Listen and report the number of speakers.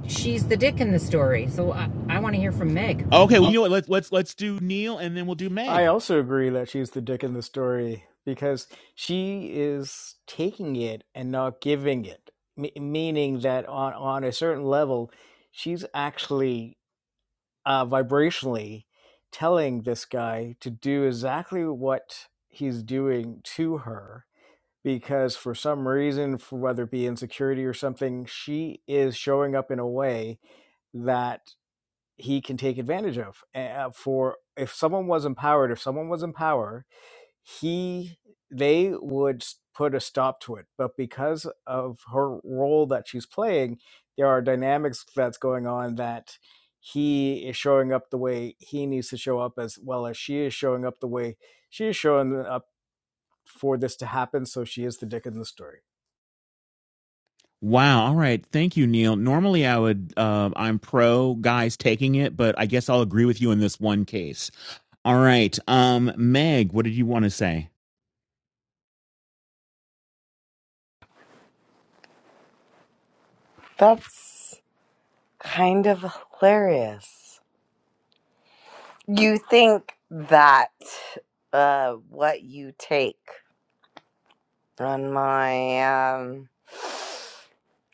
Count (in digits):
4